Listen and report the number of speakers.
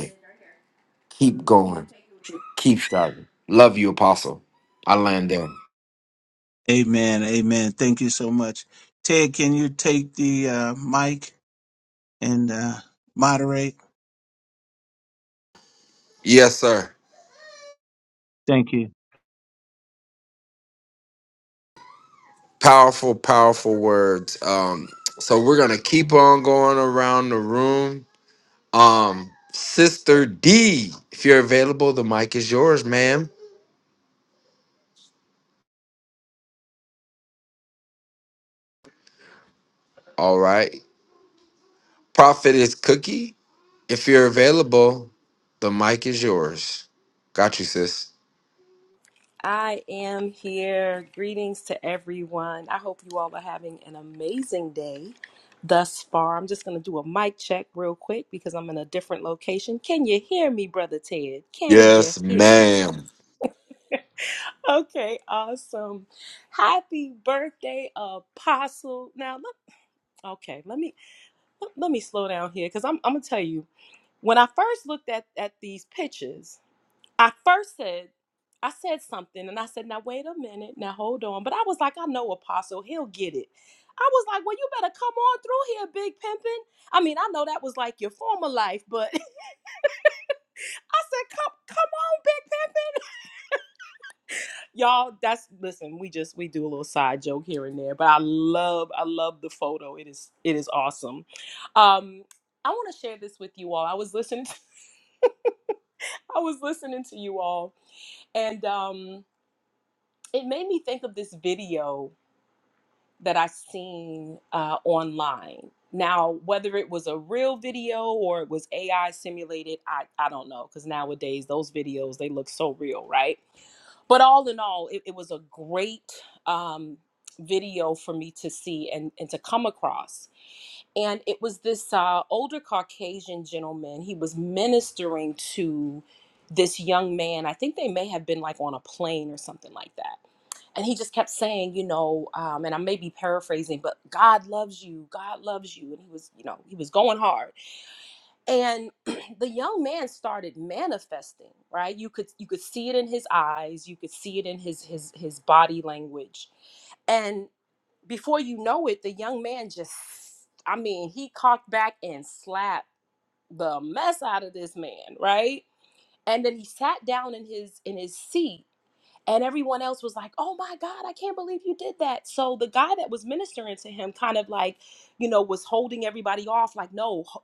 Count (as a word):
three